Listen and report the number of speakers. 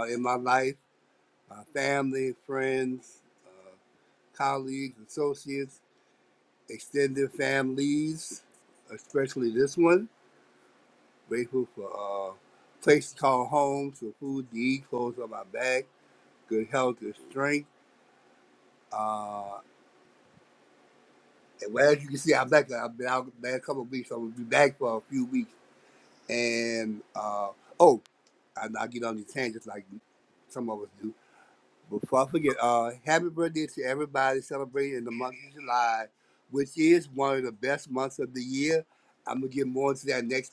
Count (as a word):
one